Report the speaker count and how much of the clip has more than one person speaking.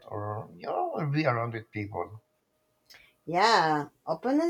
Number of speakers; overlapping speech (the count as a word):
two, no overlap